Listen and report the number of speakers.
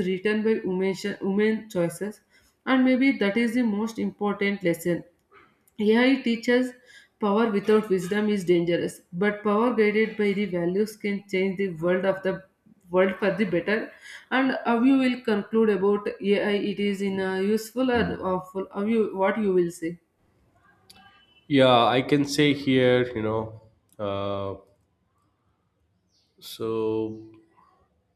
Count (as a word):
two